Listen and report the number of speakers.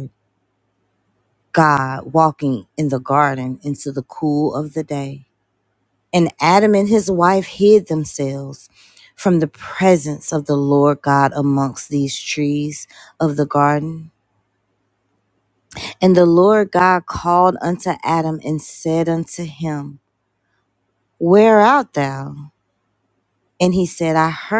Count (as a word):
one